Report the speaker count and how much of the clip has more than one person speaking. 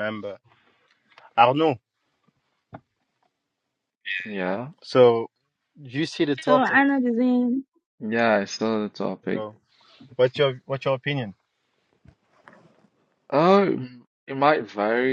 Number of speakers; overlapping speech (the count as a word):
three, about 3%